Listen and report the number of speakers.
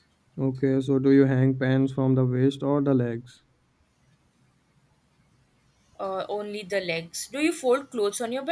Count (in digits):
2